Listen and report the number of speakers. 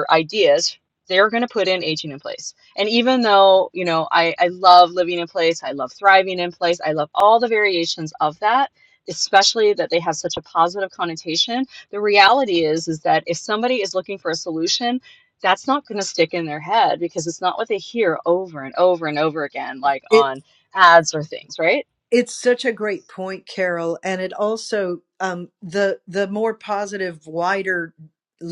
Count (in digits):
2